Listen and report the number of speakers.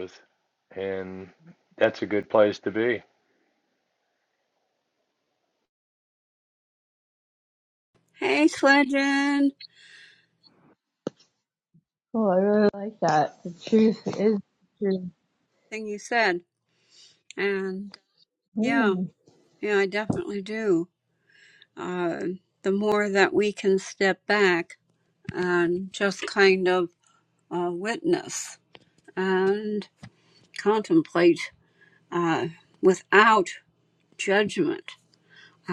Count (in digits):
3